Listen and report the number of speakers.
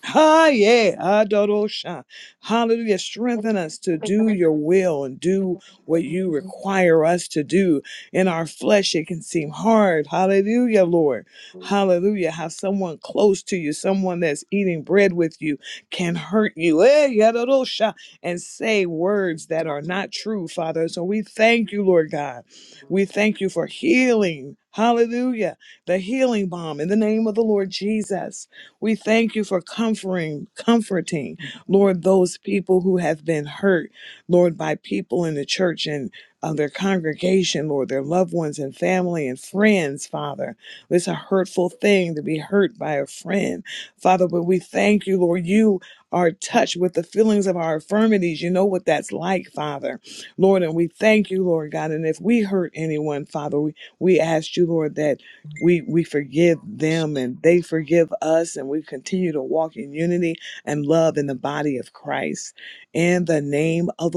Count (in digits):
1